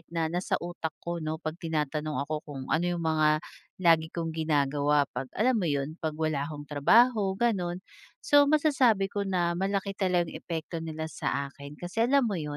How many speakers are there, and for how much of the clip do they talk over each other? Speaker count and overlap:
1, no overlap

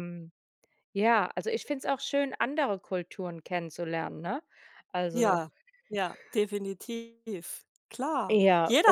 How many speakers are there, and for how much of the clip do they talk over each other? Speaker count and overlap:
2, about 6%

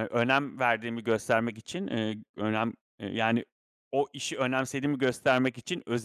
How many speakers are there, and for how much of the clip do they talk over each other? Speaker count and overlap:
1, no overlap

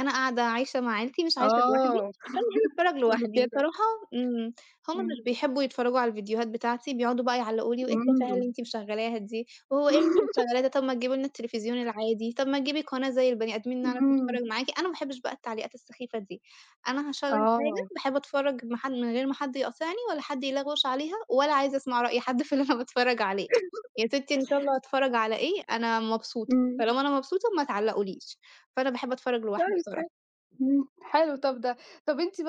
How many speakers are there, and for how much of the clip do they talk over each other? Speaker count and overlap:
2, about 12%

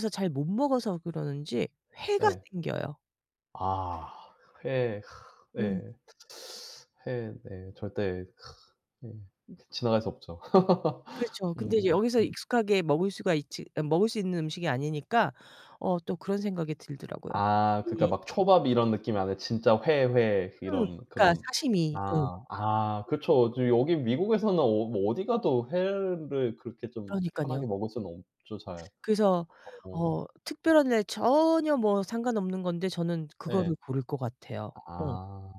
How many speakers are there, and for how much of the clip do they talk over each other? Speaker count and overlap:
2, about 10%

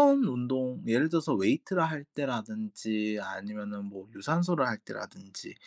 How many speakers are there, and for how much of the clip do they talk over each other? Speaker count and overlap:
1, no overlap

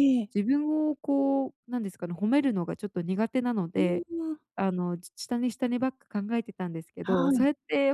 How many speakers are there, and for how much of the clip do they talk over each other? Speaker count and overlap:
2, about 9%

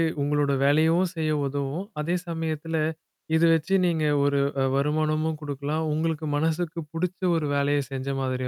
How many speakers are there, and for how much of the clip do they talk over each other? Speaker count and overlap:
1, no overlap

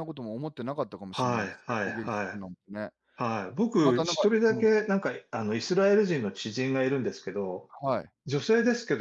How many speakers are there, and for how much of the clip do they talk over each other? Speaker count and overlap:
2, about 23%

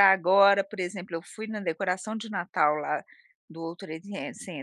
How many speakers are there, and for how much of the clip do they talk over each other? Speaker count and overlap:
1, no overlap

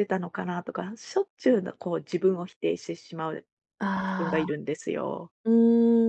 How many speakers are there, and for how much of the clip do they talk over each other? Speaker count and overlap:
2, about 7%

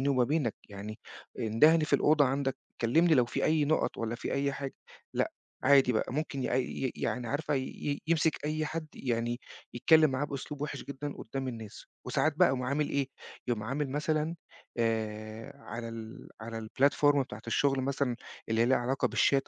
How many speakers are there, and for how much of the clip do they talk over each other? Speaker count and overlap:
1, no overlap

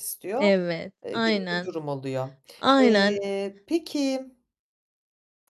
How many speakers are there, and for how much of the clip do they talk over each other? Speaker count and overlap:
2, about 22%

